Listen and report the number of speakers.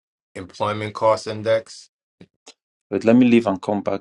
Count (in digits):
2